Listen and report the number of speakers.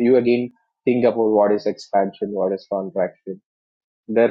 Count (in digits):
1